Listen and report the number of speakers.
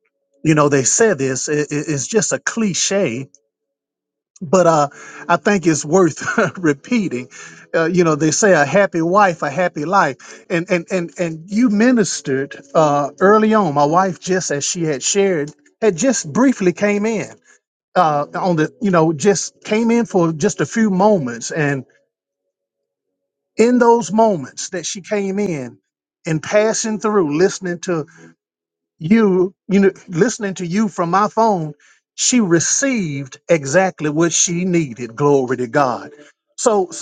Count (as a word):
one